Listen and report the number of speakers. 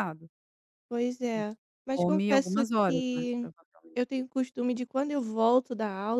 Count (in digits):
2